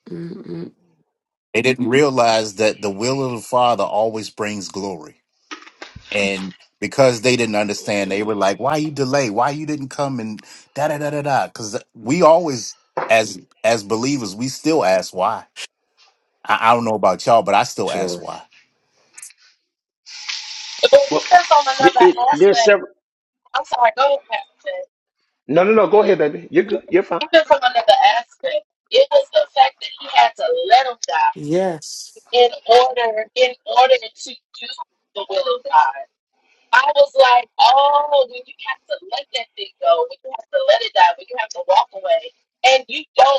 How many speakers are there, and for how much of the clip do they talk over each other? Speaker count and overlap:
4, about 3%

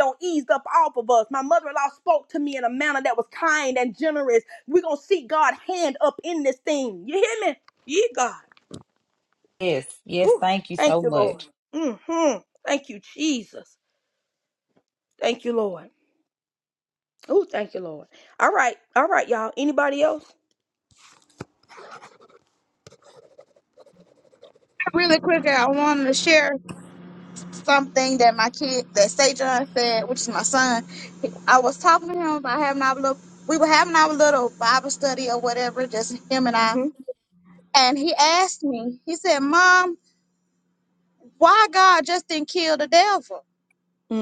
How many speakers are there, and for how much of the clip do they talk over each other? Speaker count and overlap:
3, about 2%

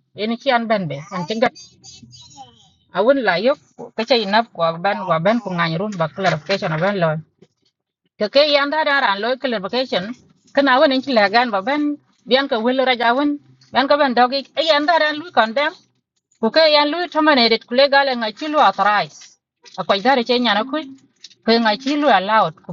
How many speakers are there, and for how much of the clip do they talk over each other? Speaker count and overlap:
1, no overlap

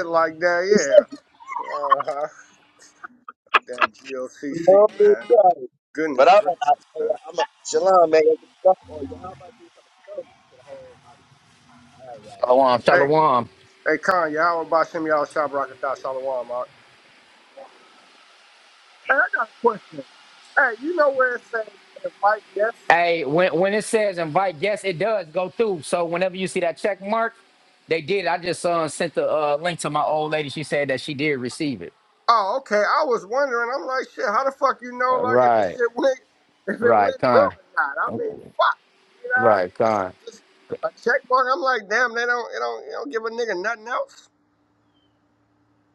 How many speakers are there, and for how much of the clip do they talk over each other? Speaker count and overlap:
3, about 8%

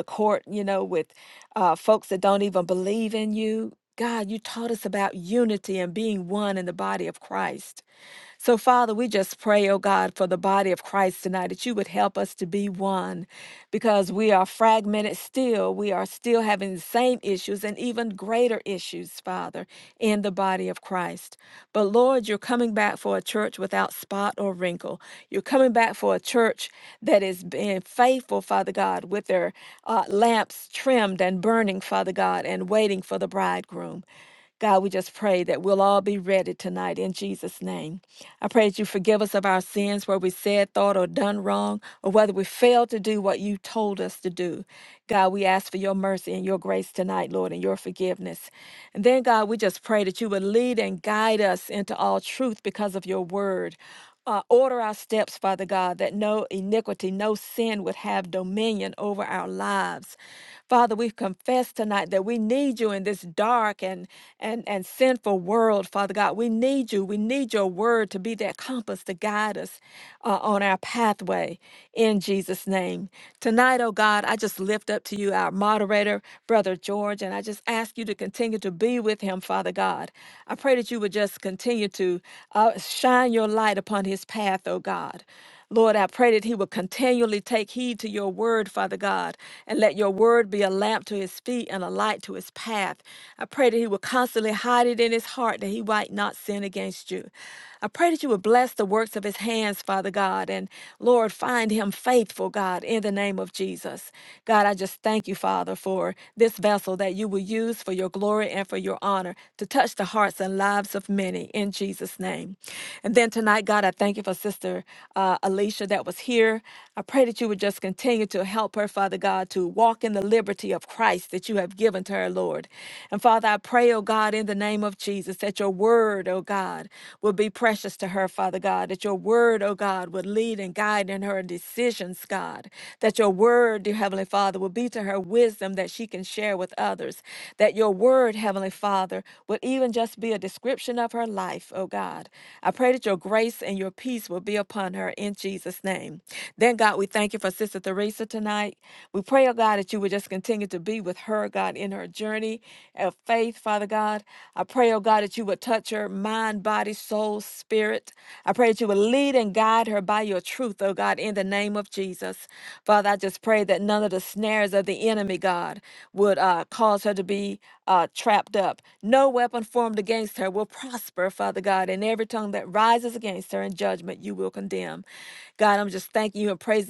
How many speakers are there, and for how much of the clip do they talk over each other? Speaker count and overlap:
1, no overlap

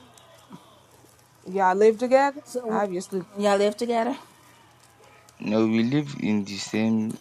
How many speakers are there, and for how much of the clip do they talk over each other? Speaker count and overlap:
3, about 4%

